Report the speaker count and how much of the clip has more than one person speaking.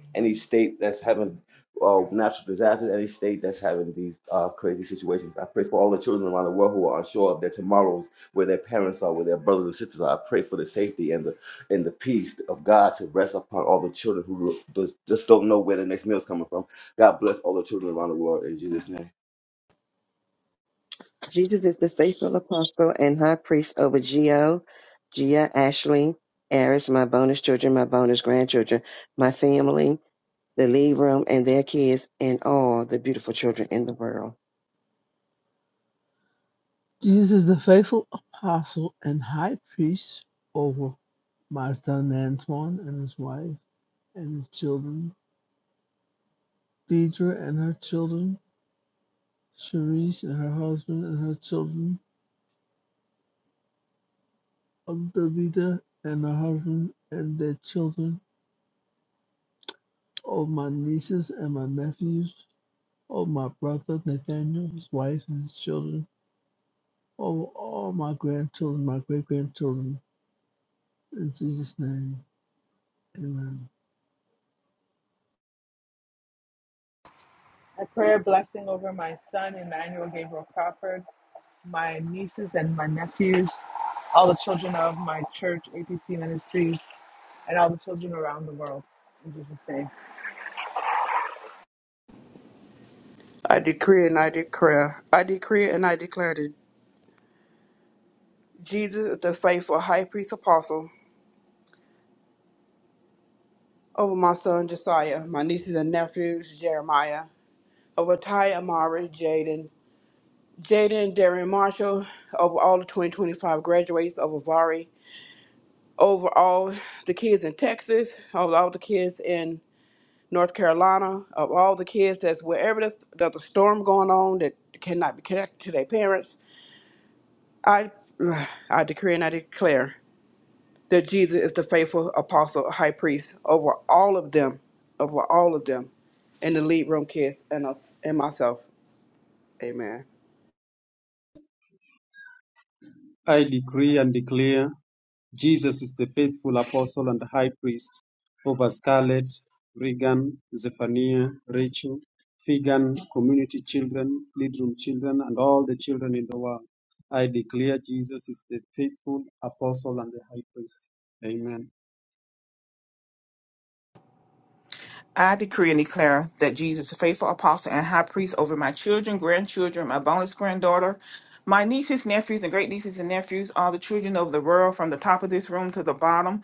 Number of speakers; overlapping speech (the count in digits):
7, no overlap